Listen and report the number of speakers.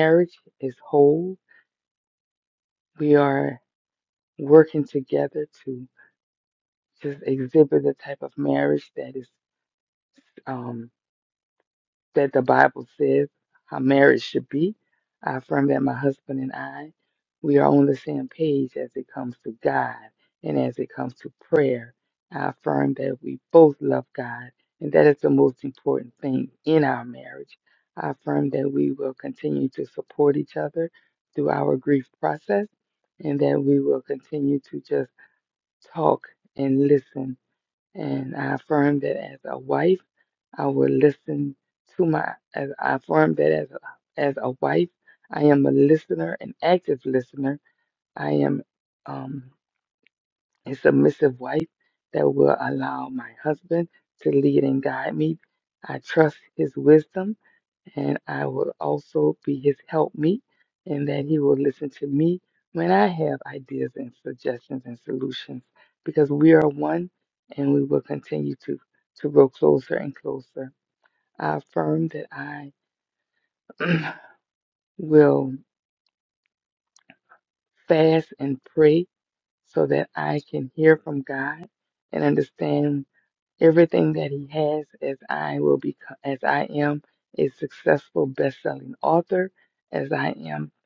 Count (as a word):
one